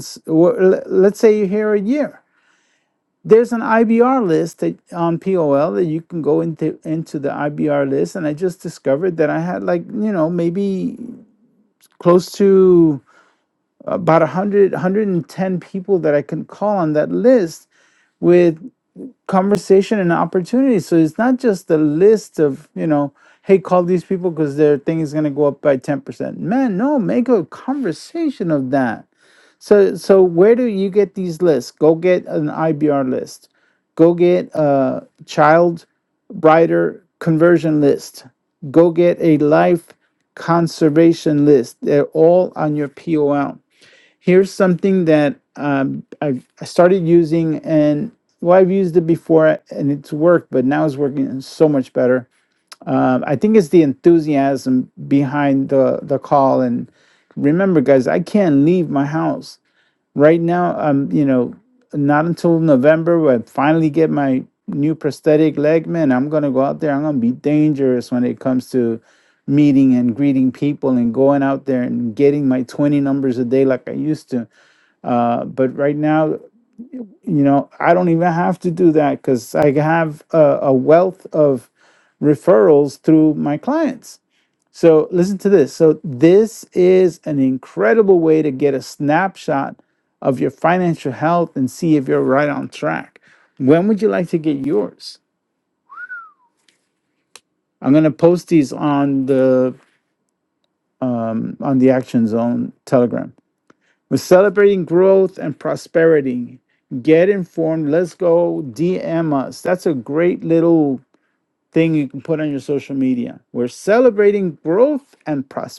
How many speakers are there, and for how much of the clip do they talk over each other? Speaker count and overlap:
1, no overlap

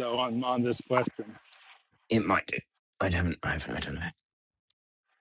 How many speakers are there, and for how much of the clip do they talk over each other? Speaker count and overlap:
2, no overlap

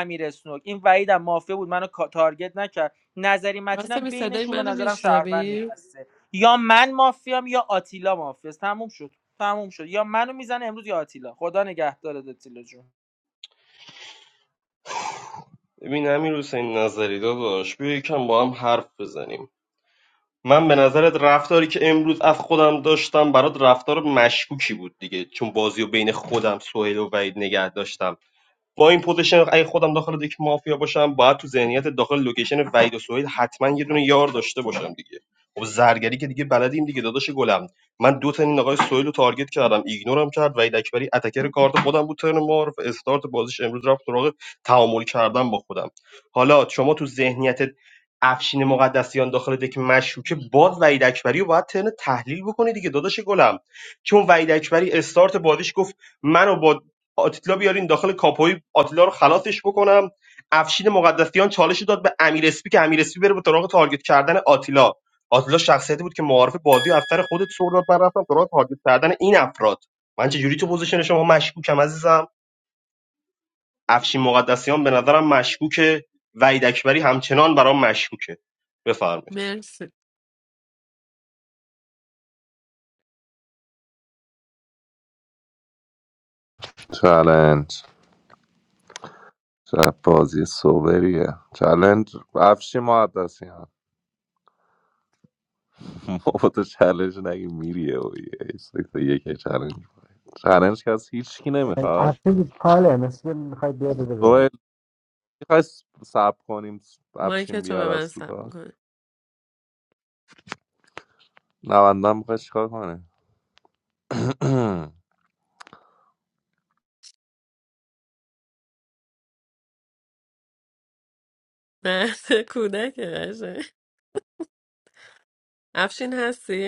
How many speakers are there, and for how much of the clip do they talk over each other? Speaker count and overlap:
5, about 3%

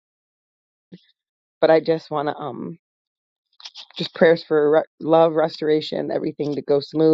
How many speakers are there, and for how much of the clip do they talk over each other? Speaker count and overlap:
1, no overlap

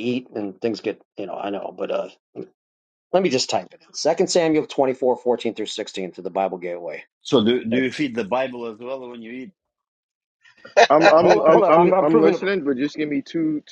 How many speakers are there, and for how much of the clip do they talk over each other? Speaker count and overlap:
3, about 9%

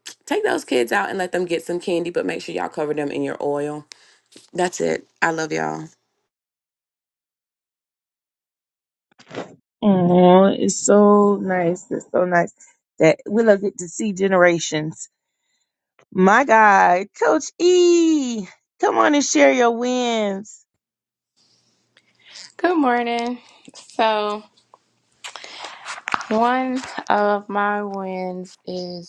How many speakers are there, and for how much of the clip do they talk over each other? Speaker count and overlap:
3, no overlap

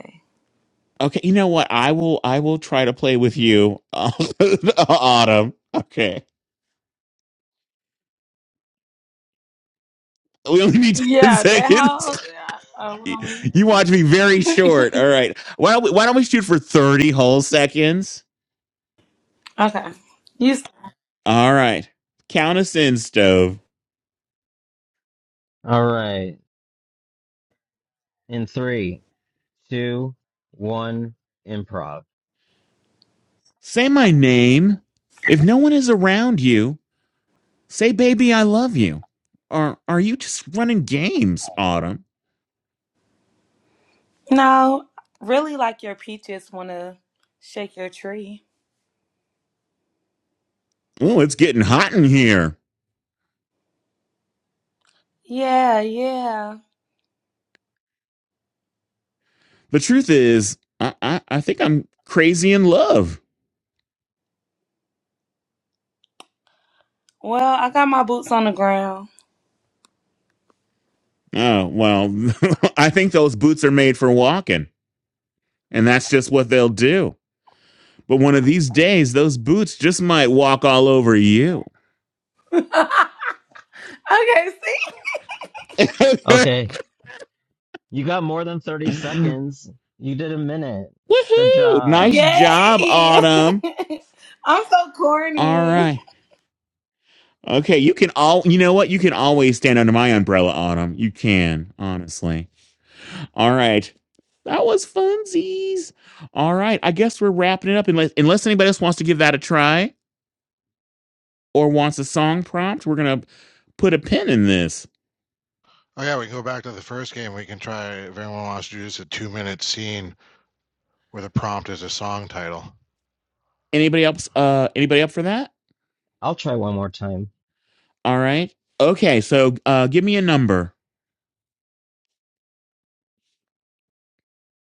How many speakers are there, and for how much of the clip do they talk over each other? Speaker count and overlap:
4, about 3%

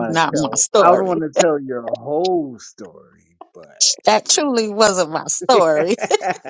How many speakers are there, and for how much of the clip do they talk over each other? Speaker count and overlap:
2, about 23%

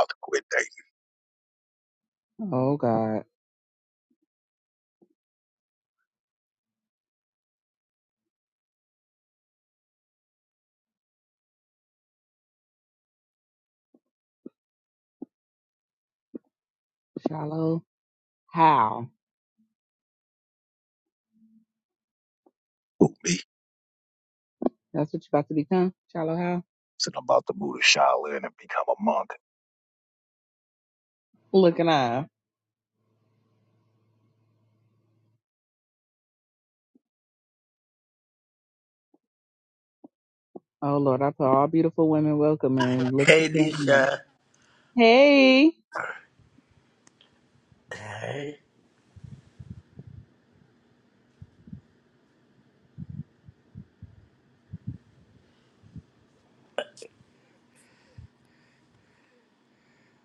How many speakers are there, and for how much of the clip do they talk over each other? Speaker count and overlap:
3, about 1%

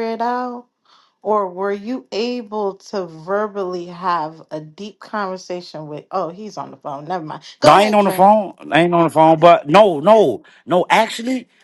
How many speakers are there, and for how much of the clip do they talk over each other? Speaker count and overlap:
2, about 5%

